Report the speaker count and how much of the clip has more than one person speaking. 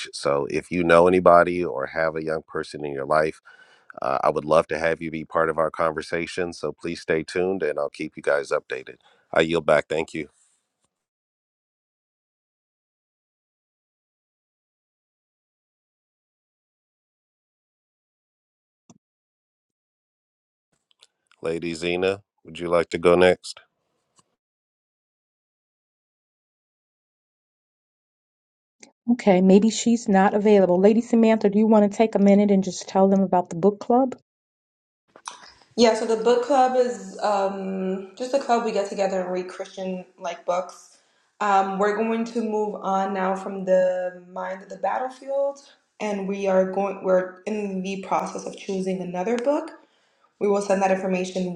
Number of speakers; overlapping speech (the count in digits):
3, no overlap